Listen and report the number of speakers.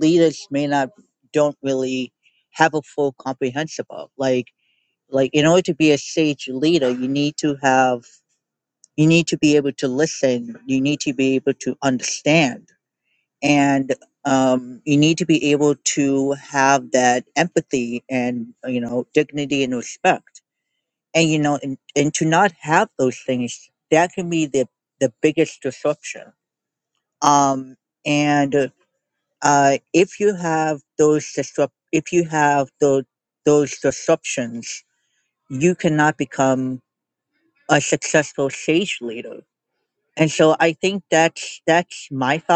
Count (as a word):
one